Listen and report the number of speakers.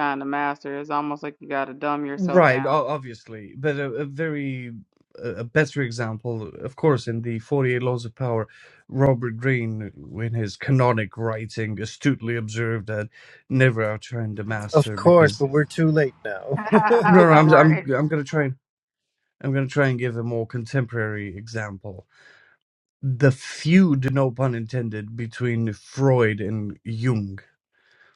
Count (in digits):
3